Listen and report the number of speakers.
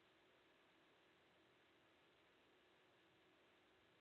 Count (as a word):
zero